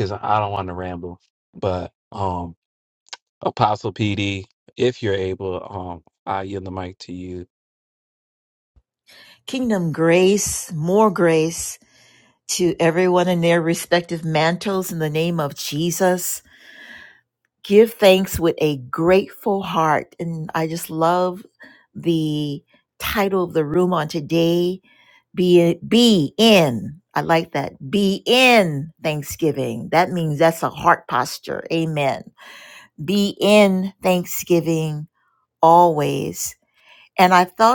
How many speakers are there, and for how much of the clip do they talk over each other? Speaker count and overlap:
2, no overlap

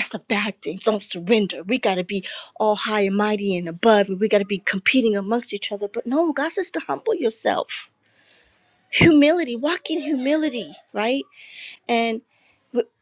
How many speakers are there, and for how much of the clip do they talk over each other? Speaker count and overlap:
1, no overlap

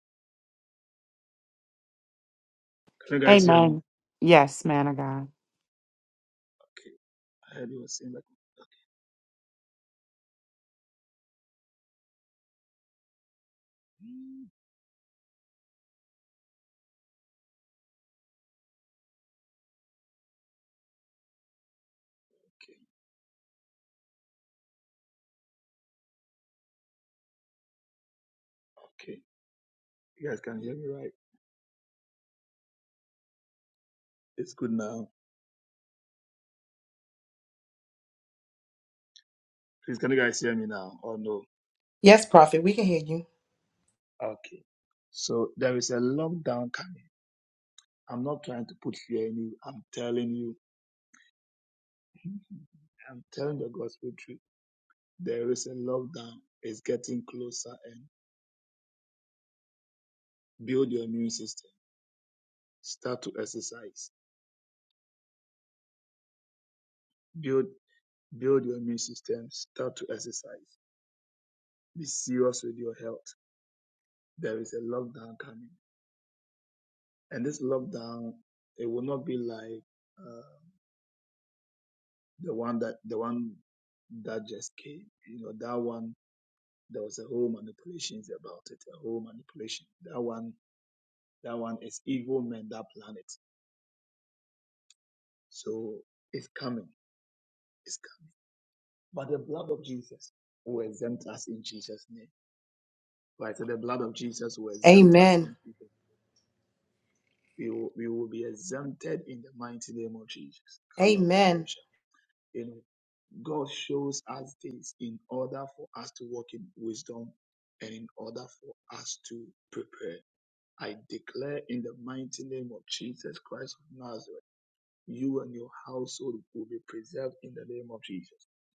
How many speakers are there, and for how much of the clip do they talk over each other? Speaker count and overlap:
3, about 1%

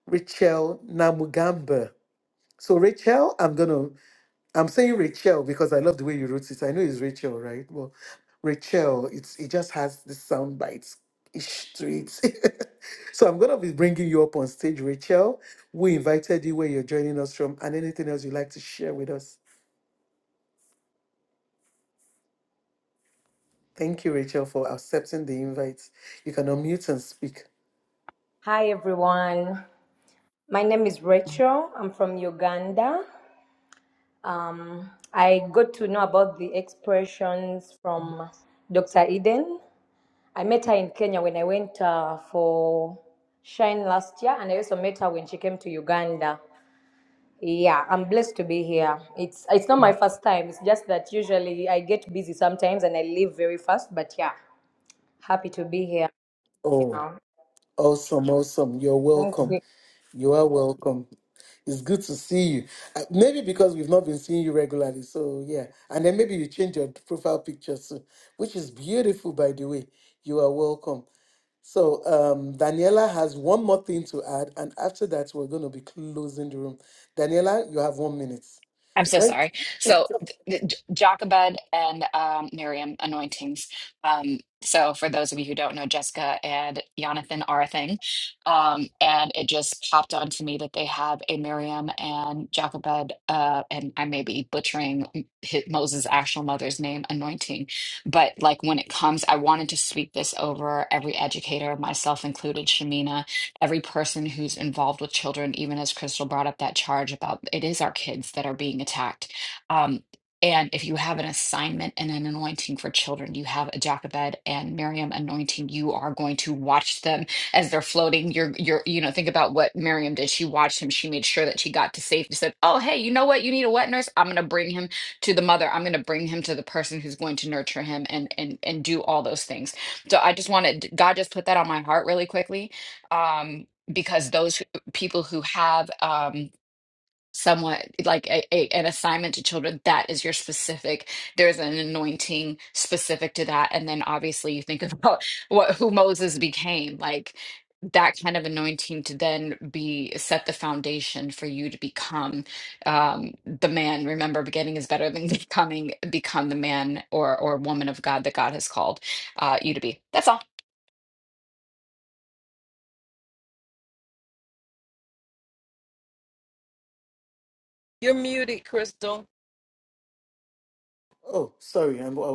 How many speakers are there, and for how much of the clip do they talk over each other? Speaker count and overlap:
4, about 1%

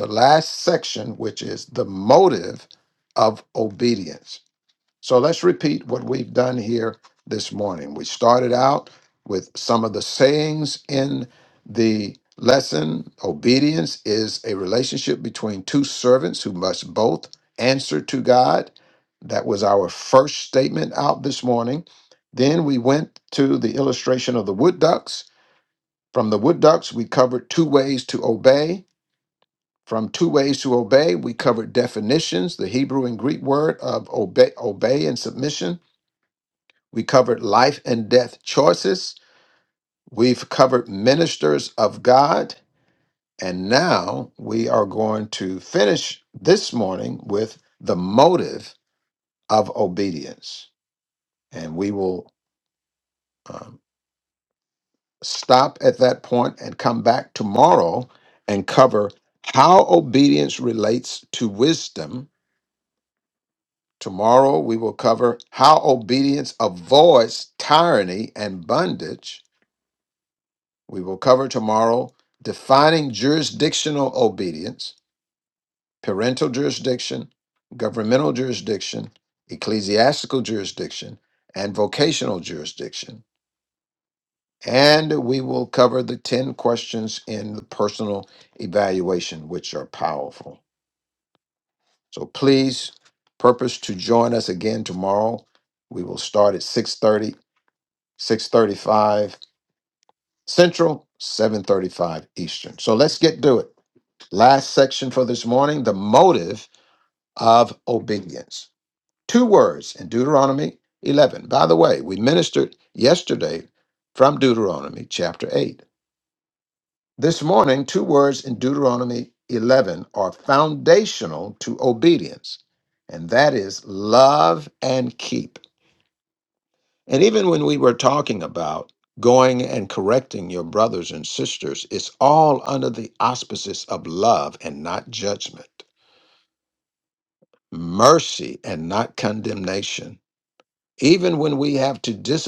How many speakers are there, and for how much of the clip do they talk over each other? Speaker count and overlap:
1, no overlap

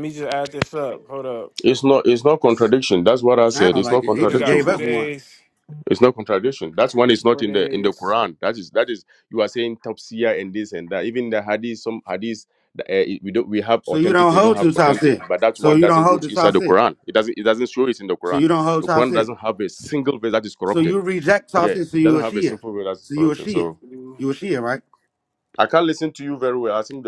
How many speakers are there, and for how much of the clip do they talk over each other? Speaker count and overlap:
3, about 25%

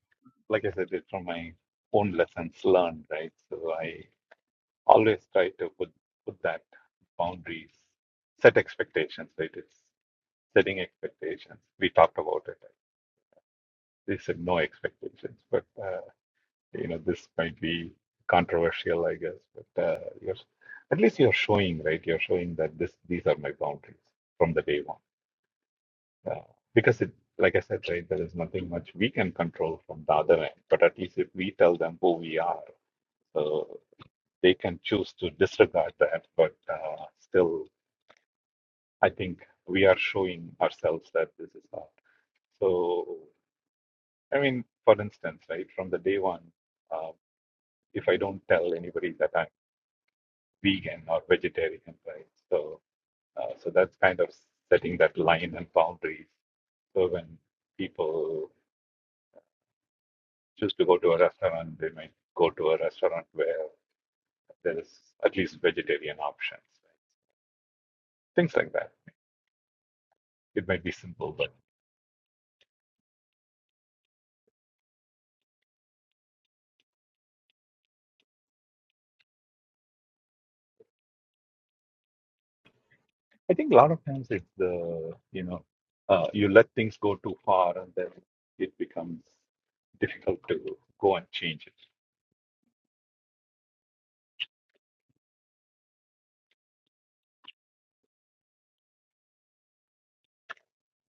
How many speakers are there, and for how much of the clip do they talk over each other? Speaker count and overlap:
1, no overlap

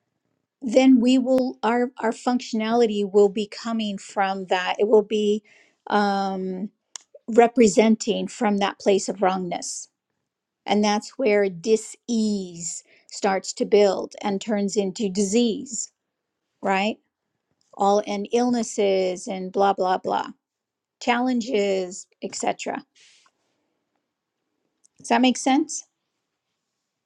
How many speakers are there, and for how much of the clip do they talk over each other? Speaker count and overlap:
1, no overlap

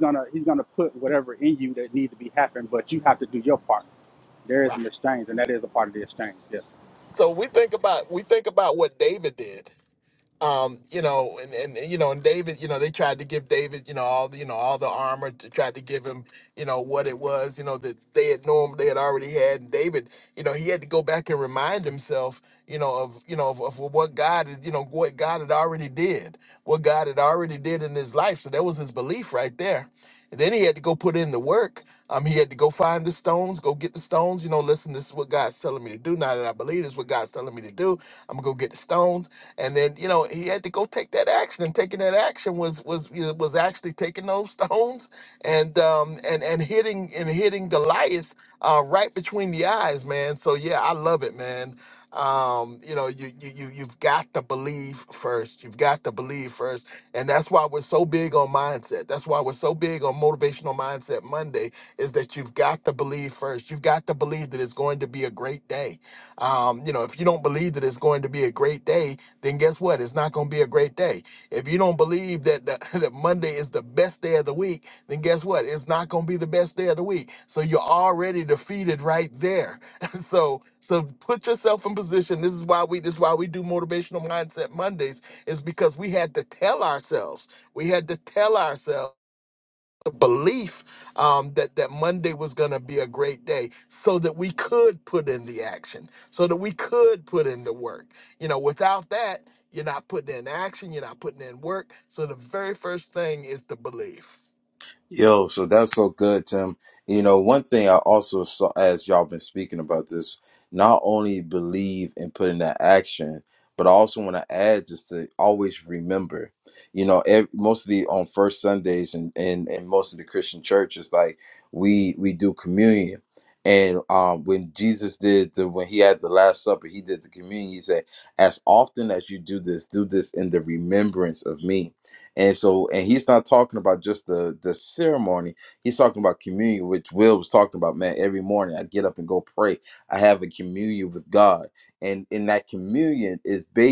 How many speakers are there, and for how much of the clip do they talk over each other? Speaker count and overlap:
3, under 1%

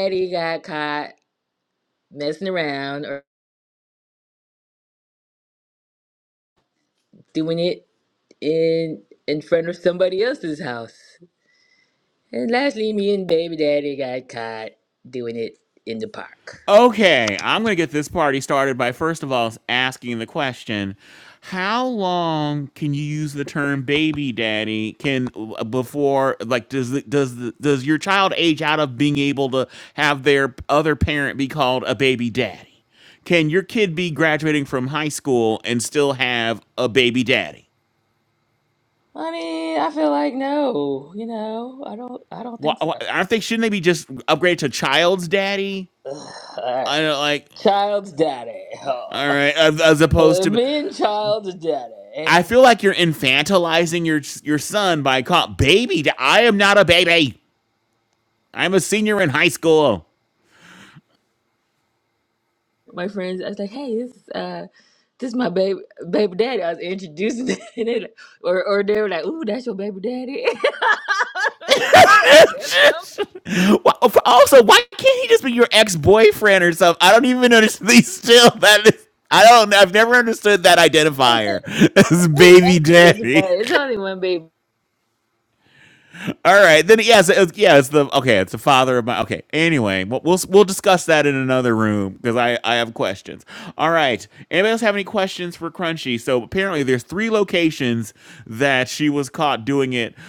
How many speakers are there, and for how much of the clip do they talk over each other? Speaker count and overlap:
2, about 3%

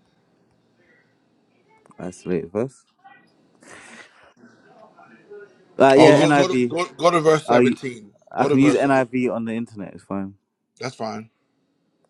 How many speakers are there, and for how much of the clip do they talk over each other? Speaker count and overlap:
2, about 14%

